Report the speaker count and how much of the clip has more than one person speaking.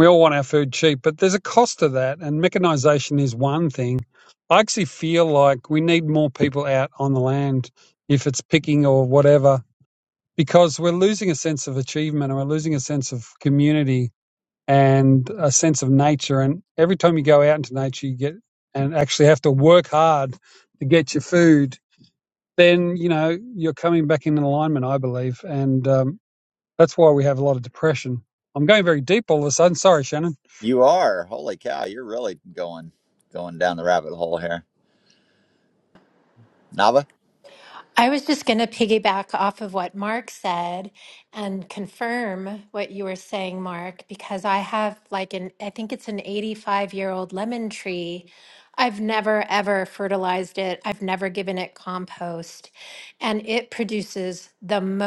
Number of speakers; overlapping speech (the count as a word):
three, no overlap